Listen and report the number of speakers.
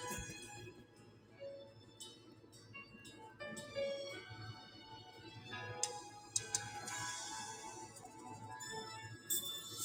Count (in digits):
0